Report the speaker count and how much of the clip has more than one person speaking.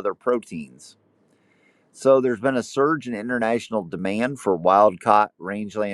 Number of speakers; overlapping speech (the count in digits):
1, no overlap